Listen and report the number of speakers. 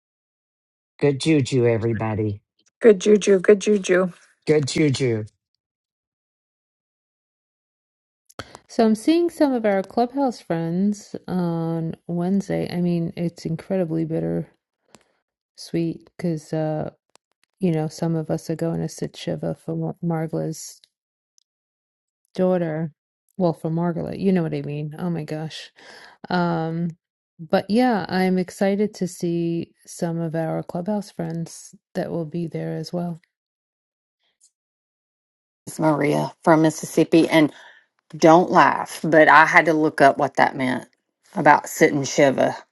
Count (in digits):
4